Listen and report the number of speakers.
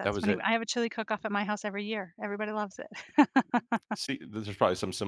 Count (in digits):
2